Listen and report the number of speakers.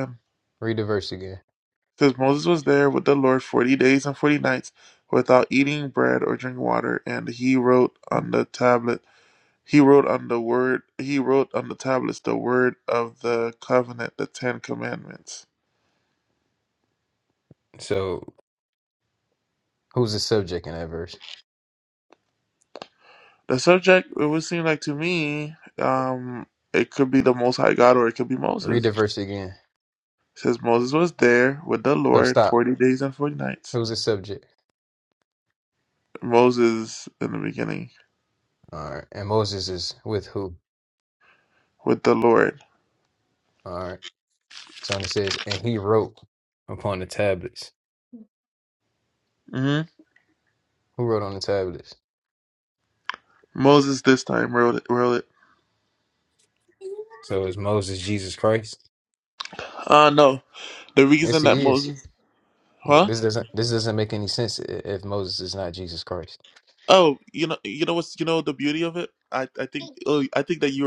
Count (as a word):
two